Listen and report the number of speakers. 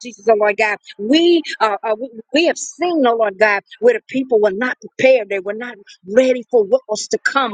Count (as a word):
one